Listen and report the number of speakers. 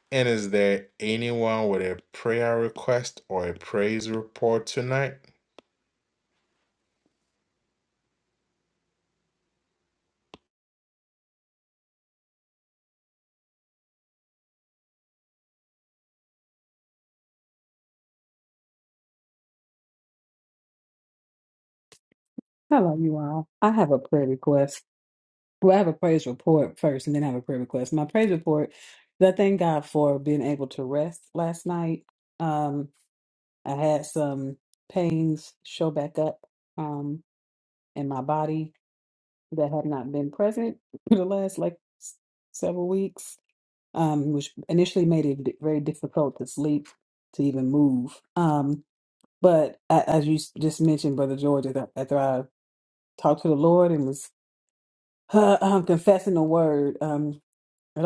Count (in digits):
2